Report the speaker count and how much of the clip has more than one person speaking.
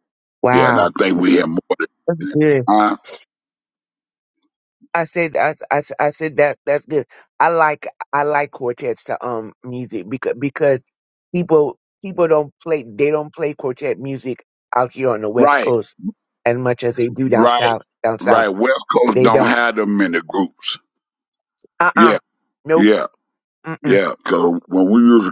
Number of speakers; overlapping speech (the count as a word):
two, about 9%